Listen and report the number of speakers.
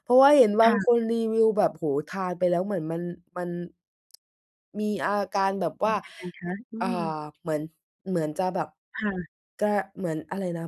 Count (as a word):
two